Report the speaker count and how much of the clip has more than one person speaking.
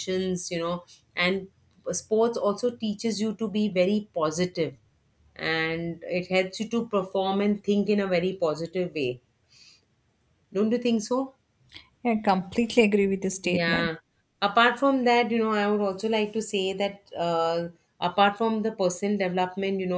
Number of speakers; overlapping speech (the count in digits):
2, about 2%